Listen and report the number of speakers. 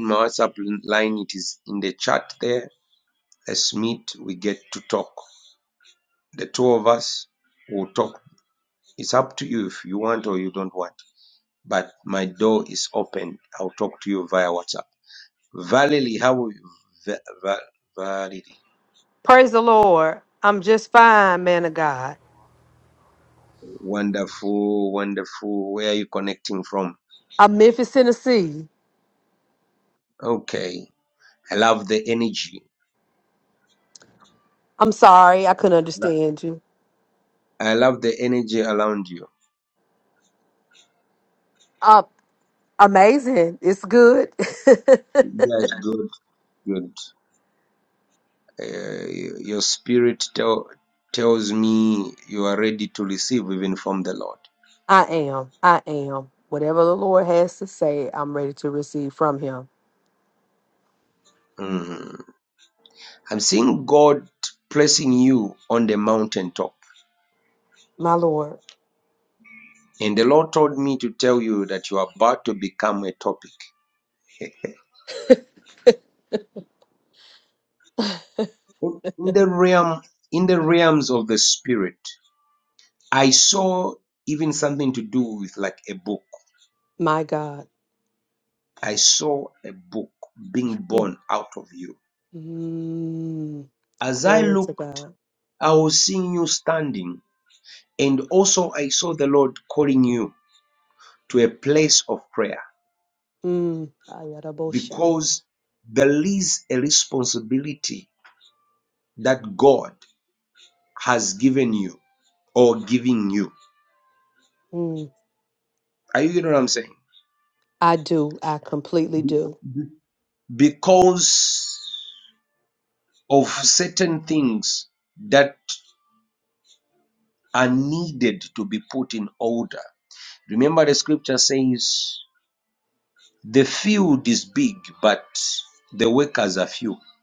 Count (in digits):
2